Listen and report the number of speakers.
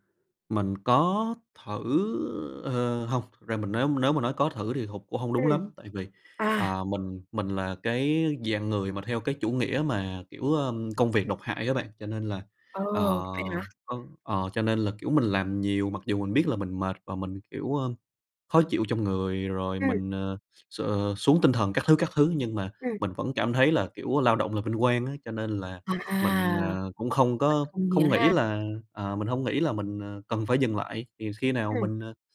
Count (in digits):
2